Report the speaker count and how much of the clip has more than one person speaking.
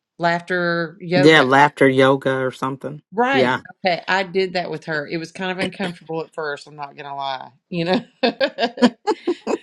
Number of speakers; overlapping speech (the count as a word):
two, about 7%